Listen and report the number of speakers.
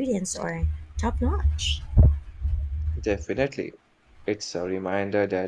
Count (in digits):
2